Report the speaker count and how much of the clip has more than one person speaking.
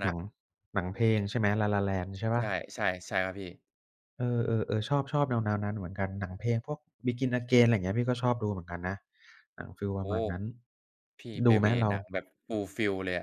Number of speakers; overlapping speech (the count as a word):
two, about 8%